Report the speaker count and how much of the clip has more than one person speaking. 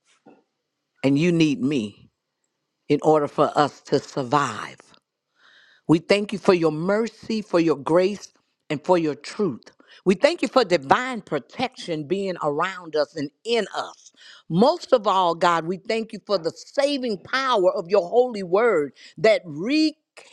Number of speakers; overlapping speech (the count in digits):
1, no overlap